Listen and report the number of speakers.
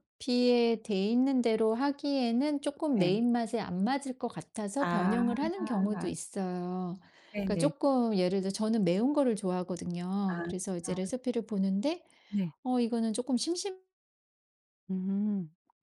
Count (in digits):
2